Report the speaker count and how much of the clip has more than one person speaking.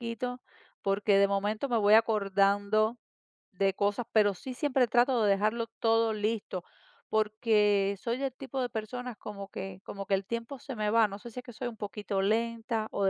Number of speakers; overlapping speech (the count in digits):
1, no overlap